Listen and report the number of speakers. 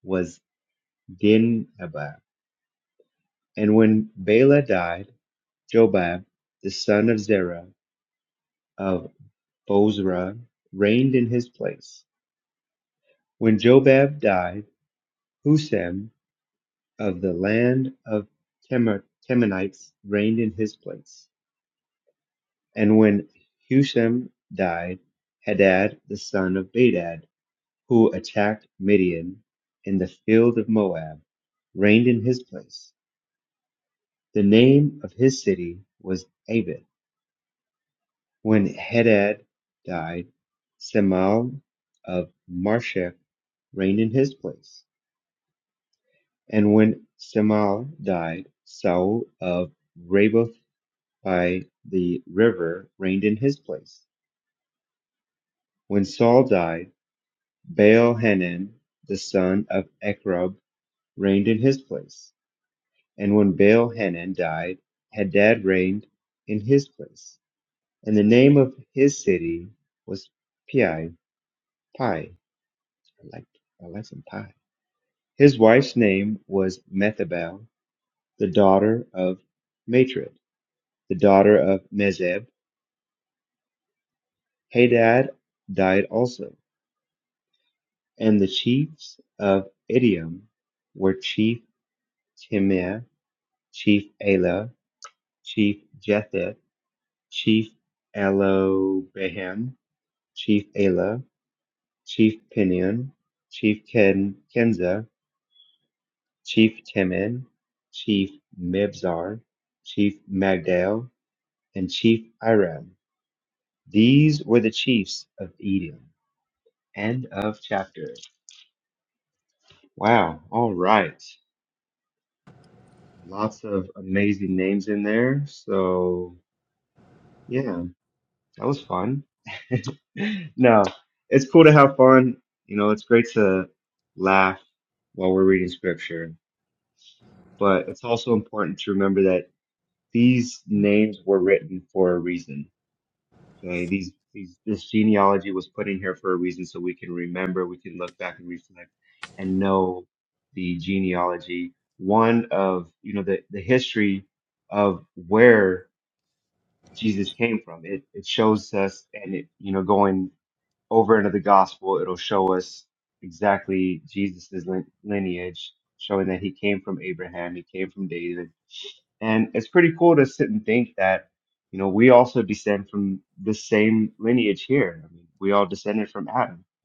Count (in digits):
1